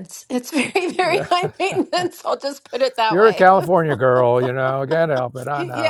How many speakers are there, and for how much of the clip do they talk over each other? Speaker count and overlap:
two, about 17%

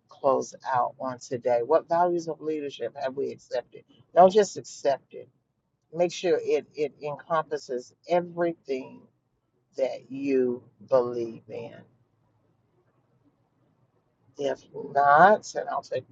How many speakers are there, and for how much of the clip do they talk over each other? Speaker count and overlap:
one, no overlap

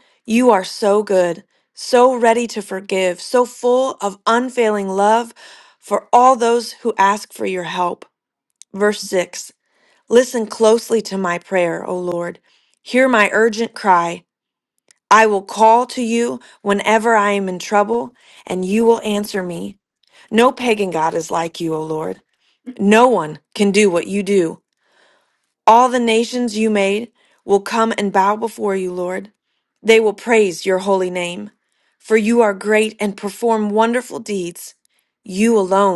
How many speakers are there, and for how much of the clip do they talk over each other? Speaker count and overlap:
one, no overlap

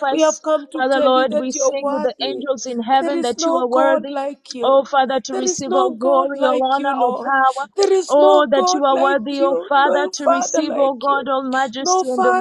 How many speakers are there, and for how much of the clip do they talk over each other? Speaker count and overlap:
two, about 72%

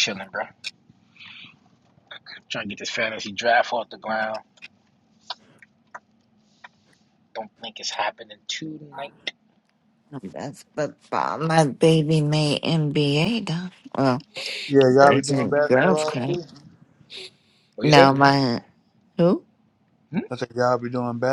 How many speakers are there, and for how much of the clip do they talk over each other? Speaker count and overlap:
three, about 8%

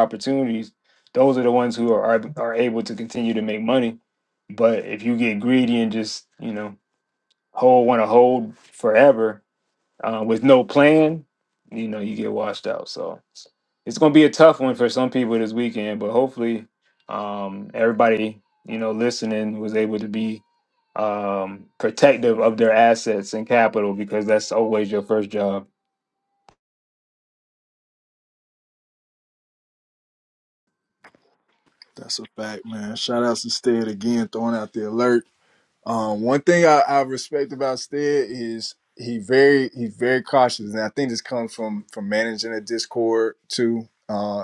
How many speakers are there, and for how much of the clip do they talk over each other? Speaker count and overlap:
two, no overlap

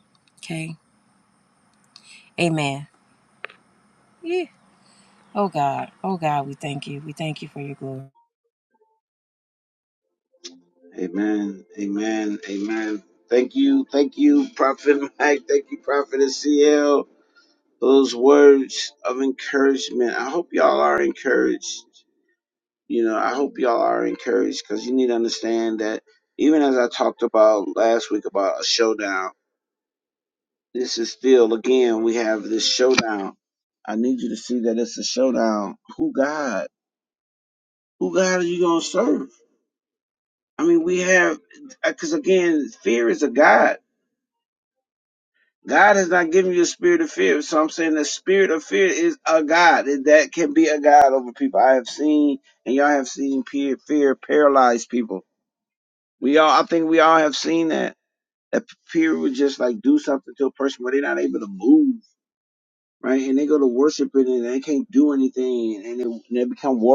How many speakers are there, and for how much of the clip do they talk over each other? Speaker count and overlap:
two, no overlap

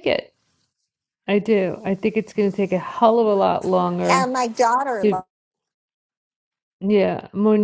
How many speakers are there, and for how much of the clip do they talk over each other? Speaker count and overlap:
two, about 5%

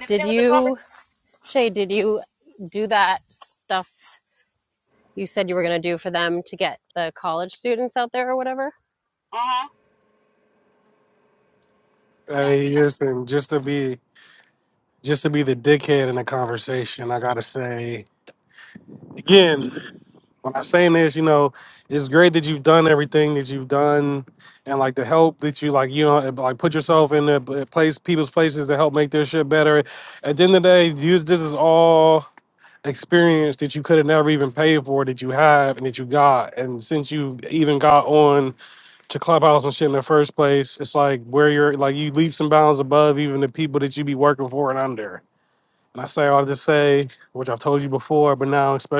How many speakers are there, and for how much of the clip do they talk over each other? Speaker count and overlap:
three, about 2%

